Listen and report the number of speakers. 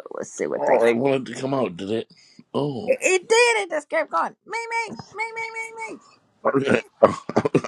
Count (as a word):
two